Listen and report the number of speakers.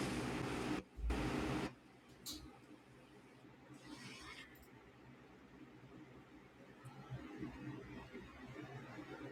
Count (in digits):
0